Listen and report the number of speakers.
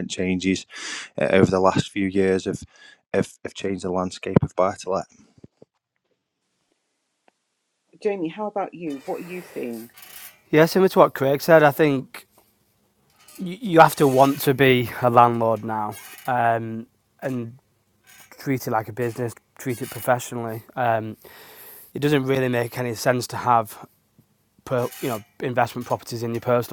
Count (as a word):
three